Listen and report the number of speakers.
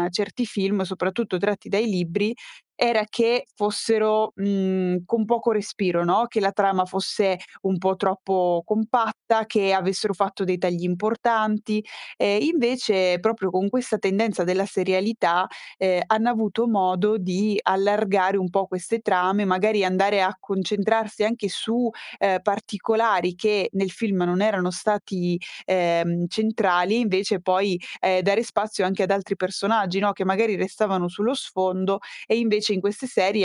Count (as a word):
one